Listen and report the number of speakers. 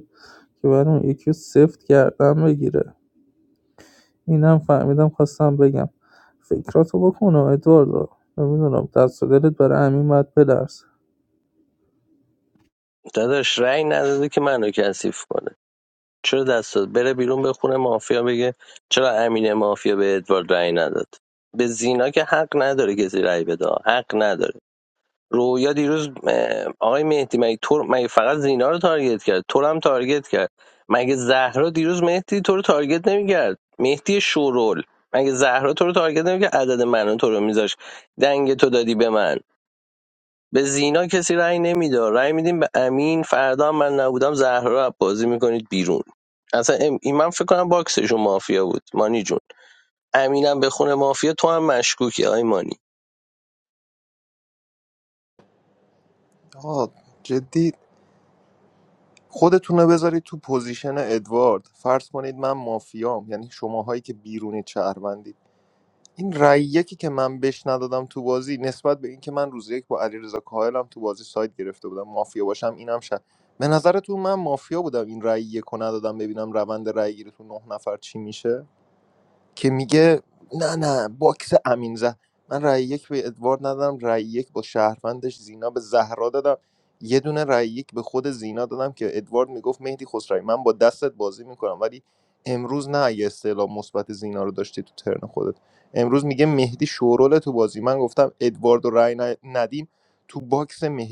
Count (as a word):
three